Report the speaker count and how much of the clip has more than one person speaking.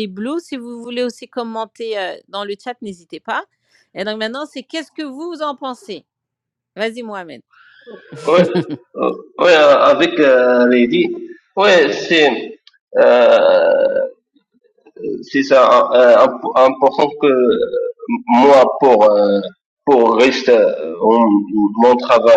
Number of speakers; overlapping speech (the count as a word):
two, no overlap